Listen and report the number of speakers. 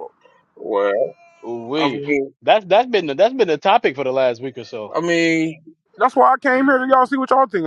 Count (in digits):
3